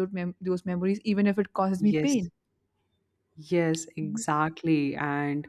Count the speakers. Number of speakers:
2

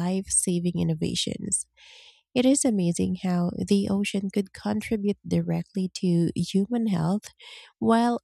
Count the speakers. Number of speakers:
1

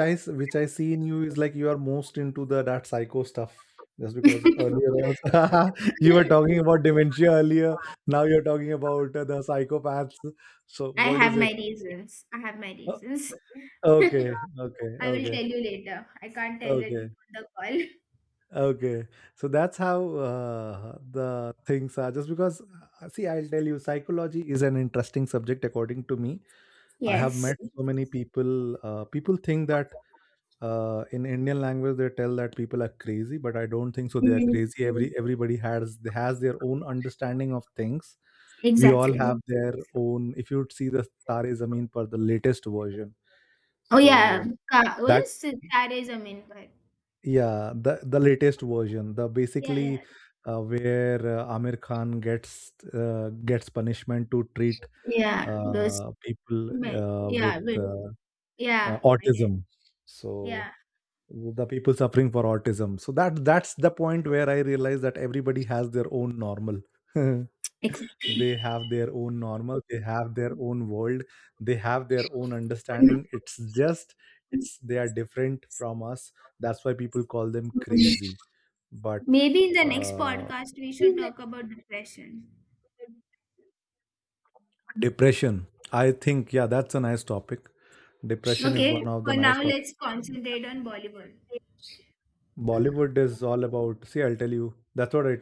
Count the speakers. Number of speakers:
2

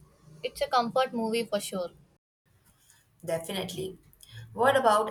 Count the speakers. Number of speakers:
2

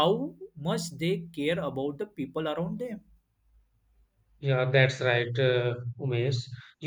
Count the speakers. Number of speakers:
2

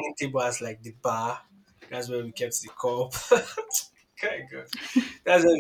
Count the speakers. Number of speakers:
1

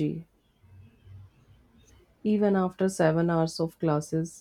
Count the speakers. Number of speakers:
1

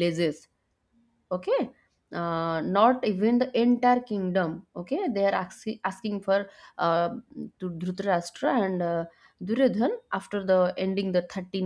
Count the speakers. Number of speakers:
1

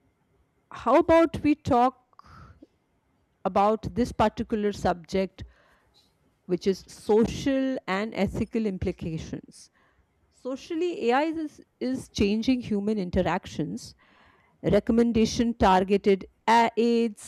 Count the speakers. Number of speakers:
1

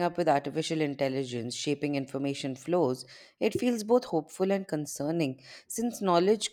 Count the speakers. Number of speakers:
1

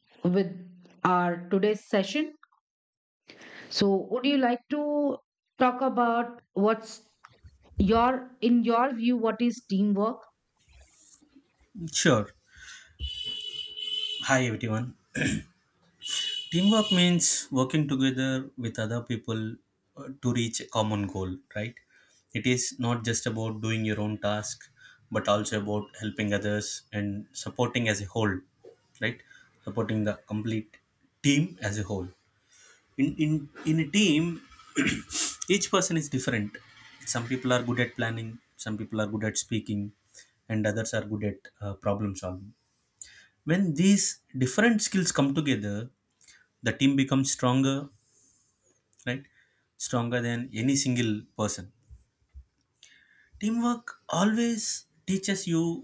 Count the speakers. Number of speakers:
2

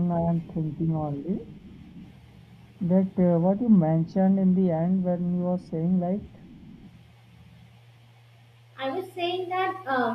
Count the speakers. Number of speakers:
2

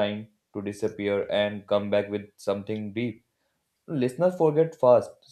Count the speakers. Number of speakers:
1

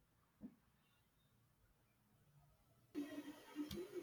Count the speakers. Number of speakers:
0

